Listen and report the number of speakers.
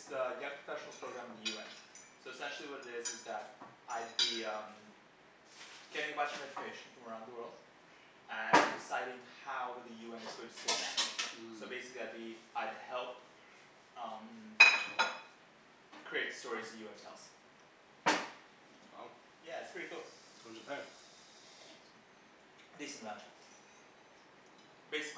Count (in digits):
2